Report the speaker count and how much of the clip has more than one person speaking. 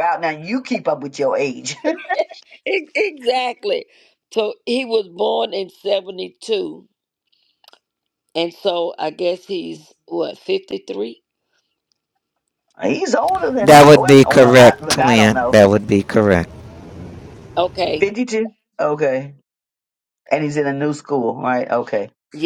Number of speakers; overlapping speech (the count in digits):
3, about 9%